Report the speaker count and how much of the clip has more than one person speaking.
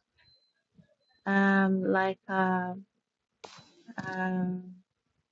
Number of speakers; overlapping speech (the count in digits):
1, no overlap